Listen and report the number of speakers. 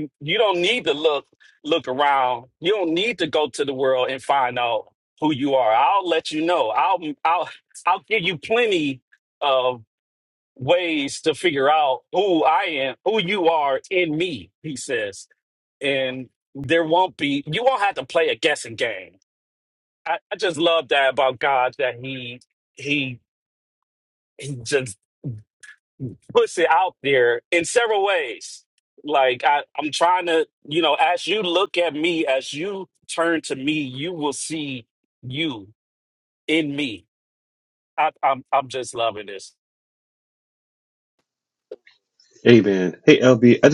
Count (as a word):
two